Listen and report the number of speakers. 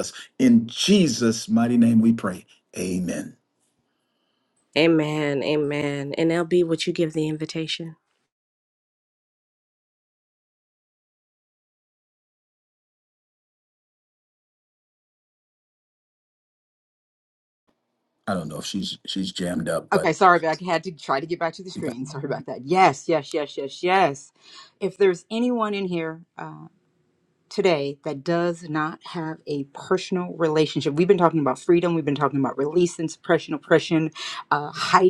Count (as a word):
three